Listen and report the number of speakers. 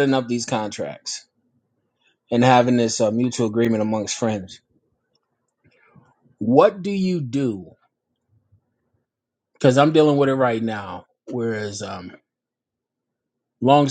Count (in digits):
1